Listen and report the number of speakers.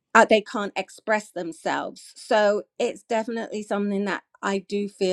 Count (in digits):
1